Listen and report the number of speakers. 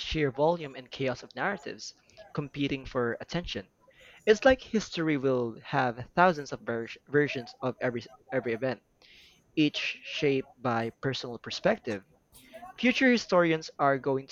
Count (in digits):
1